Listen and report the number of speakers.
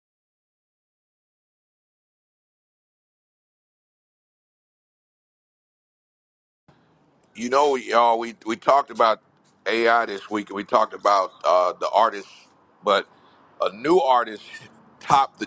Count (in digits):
1